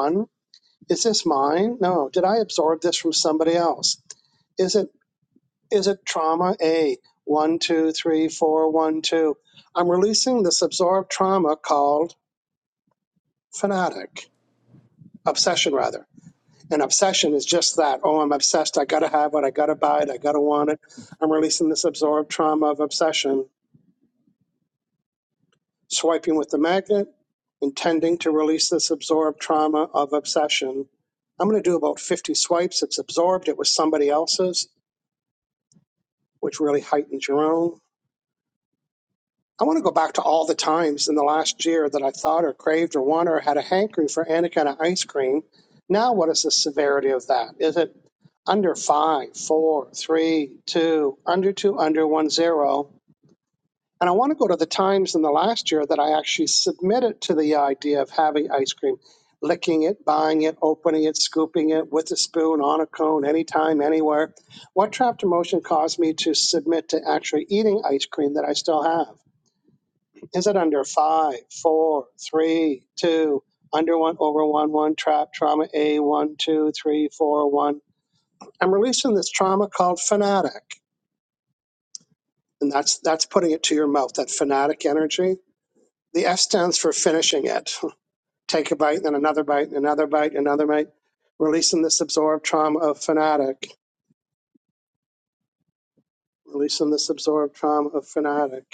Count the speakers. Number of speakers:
1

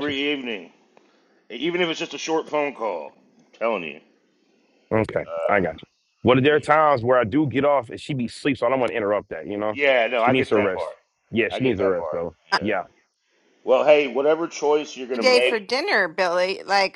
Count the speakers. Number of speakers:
3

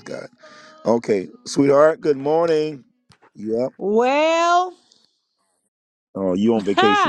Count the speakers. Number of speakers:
2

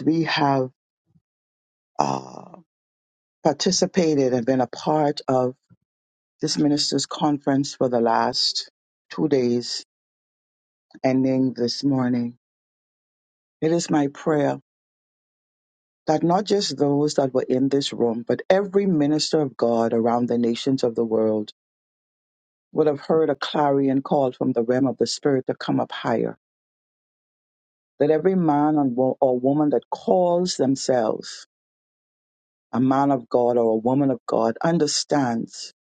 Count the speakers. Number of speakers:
1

